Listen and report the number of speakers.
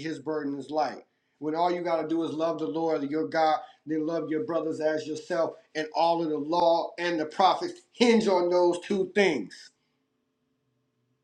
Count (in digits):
1